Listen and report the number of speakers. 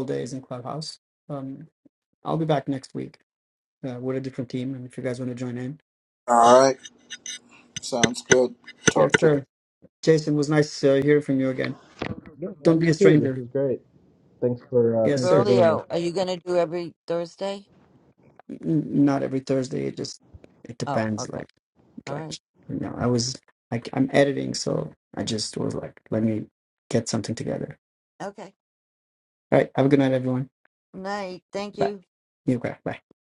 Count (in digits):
4